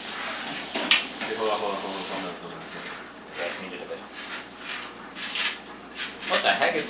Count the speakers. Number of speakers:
two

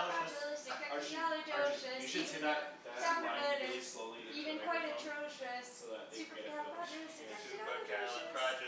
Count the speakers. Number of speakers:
three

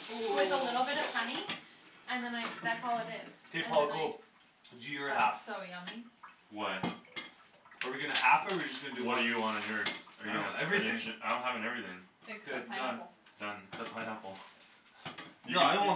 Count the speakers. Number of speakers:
four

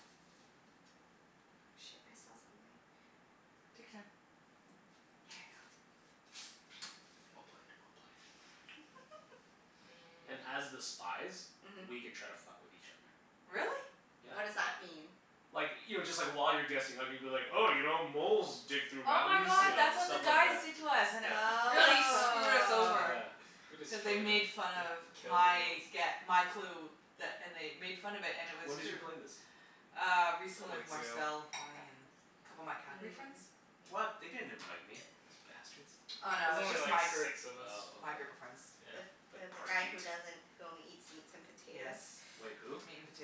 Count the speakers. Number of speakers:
four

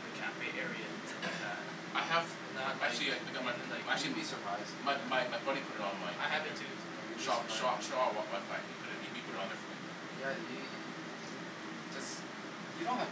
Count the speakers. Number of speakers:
three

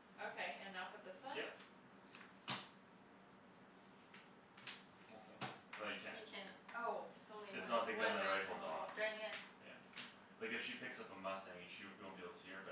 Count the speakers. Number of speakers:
three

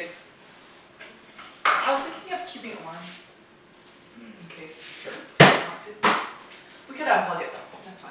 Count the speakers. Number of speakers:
one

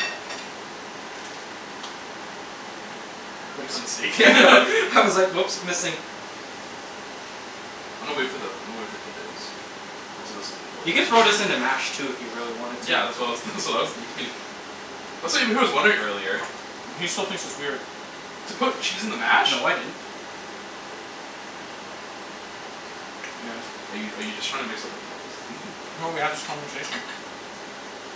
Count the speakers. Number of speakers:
three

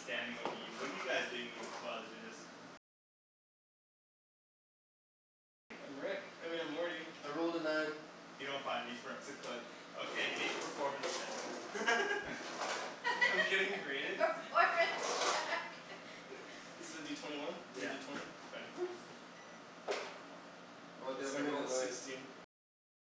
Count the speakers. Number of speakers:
four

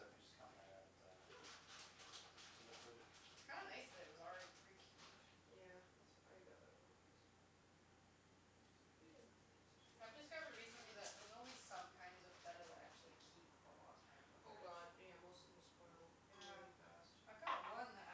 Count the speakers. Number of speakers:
three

